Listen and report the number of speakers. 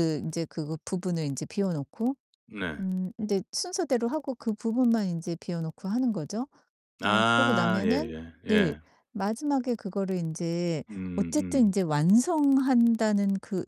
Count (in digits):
2